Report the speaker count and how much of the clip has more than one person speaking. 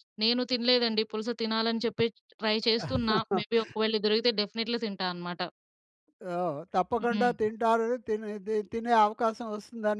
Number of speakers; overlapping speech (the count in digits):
2, about 3%